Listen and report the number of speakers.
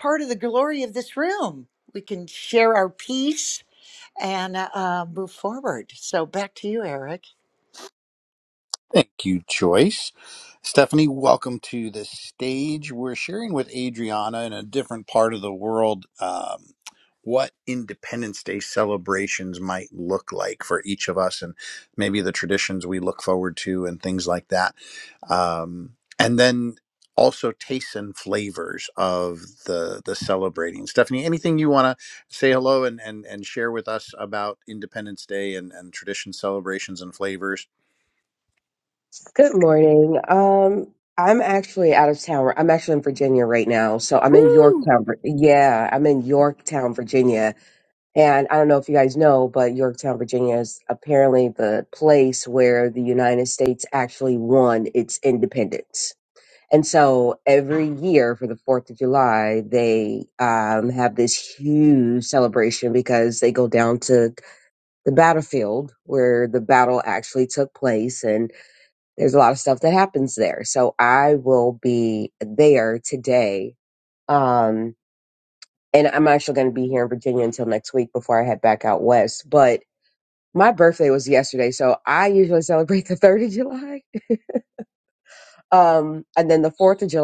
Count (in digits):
3